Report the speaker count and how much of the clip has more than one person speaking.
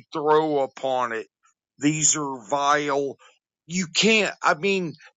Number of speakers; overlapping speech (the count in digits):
1, no overlap